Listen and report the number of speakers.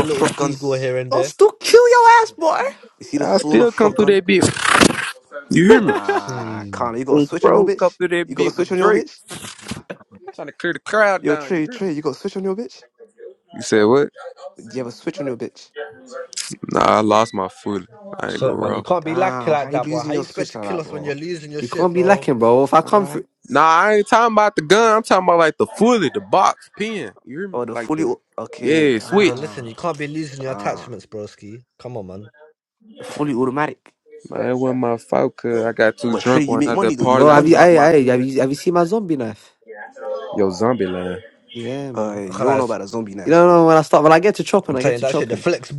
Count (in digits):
4